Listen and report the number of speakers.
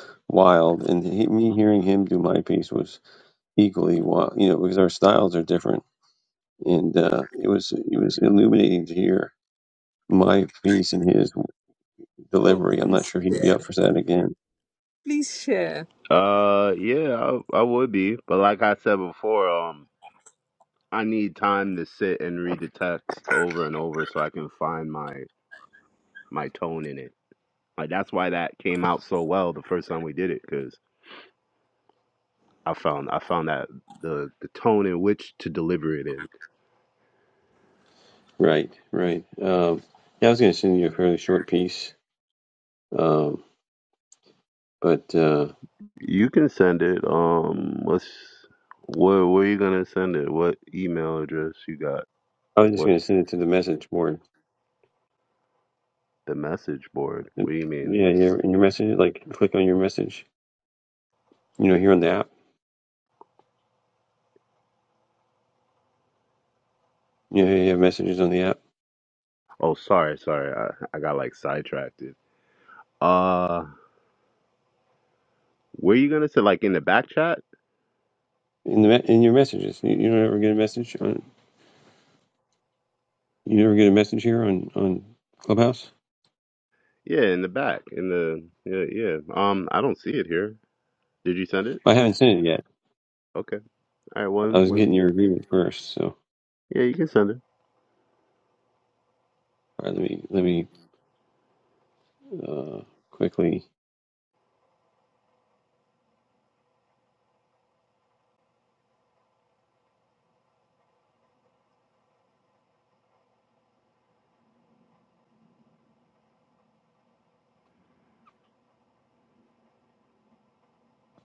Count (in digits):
3